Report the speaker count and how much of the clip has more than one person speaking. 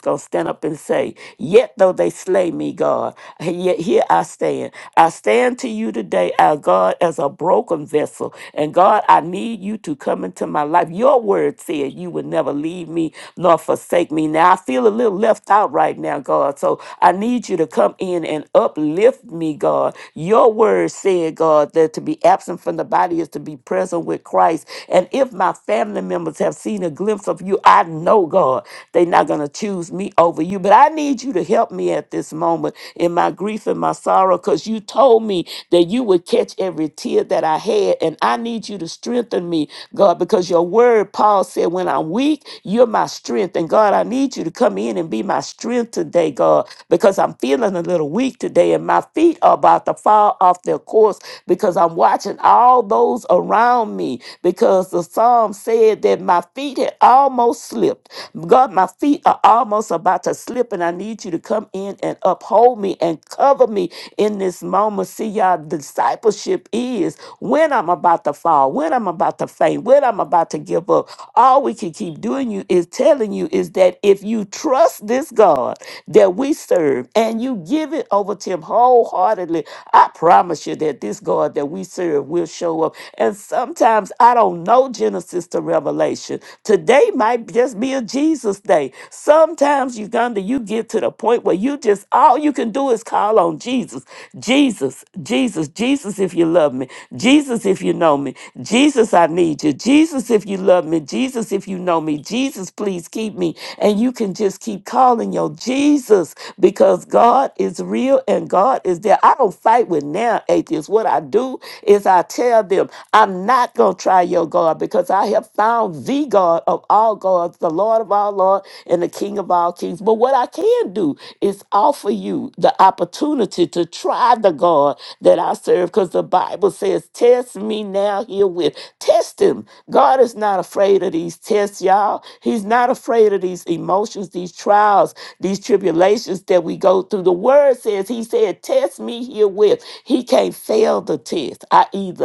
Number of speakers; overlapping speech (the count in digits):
1, no overlap